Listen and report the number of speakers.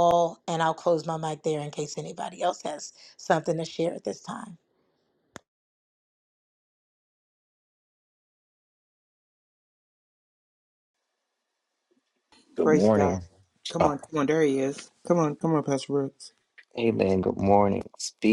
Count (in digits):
3